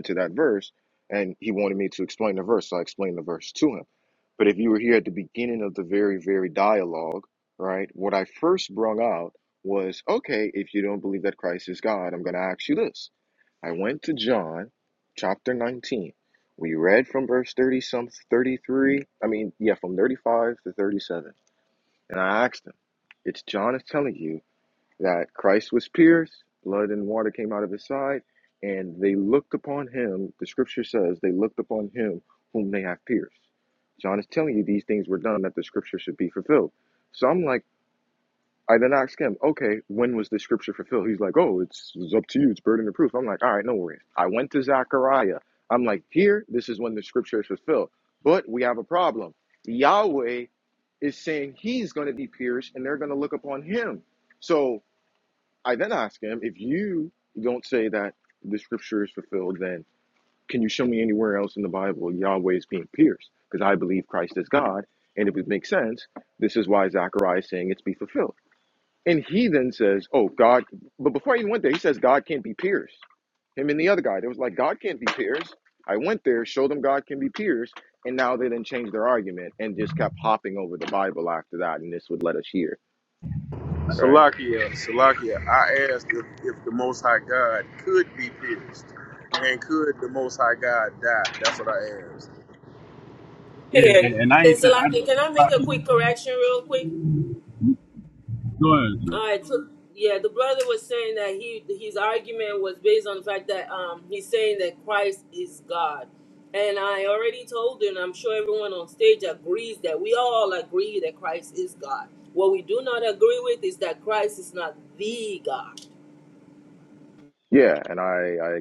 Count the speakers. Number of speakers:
4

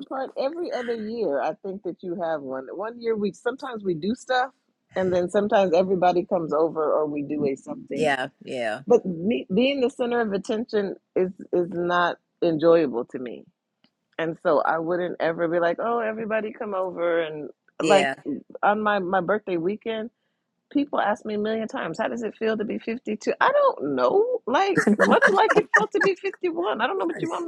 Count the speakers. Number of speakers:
2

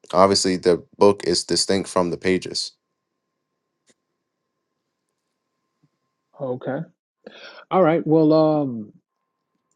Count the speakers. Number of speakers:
2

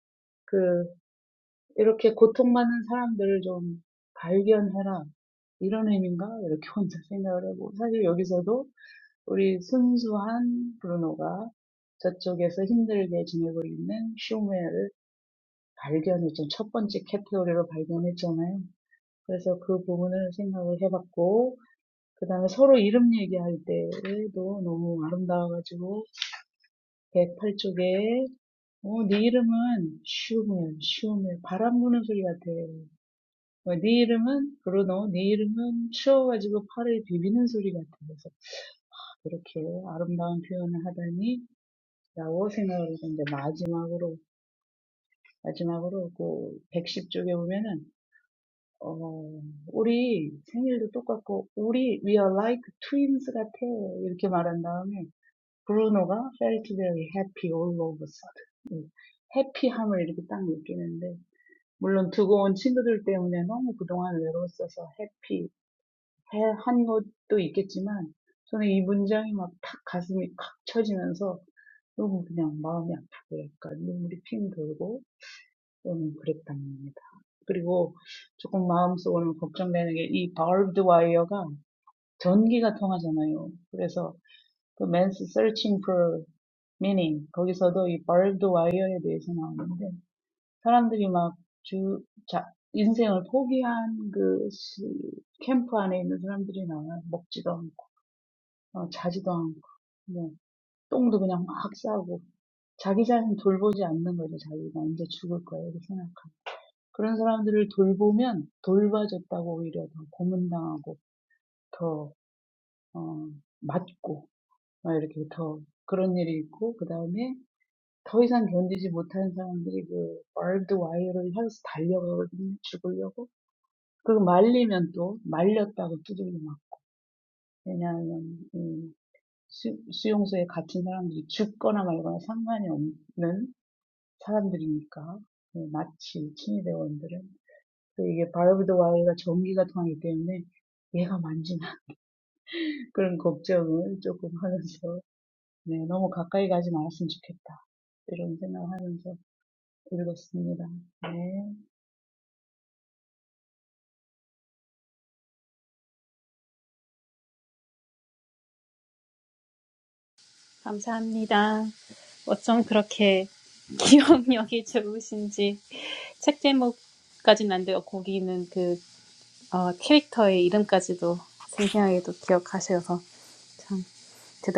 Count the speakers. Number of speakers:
2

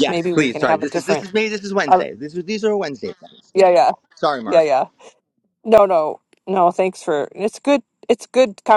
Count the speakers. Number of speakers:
2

